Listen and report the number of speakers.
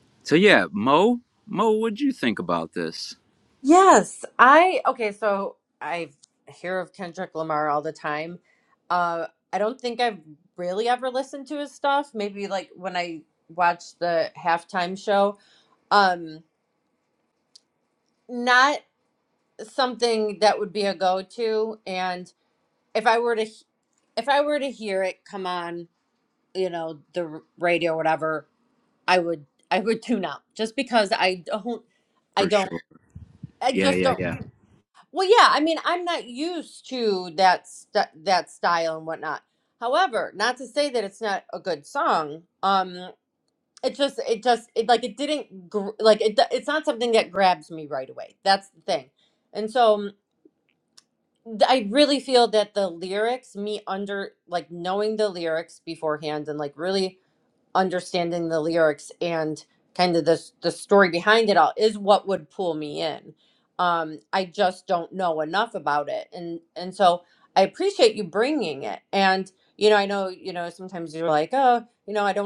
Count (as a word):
two